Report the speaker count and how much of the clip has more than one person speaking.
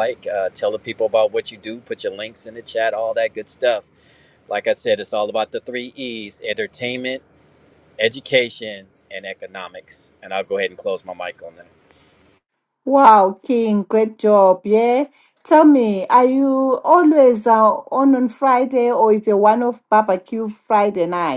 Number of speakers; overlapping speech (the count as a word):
two, no overlap